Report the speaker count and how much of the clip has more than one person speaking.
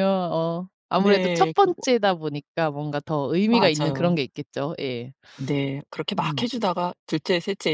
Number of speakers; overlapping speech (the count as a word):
two, about 23%